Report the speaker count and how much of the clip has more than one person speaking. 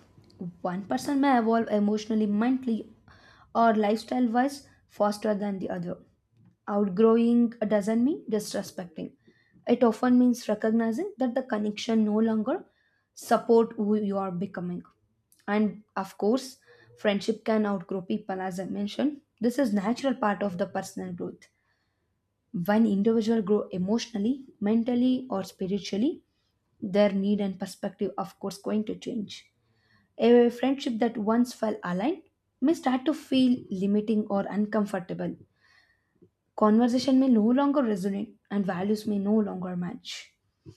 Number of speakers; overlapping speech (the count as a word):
one, no overlap